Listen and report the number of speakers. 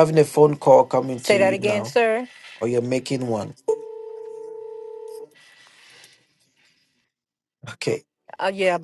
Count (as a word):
two